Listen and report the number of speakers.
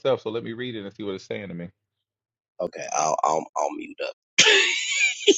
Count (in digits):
2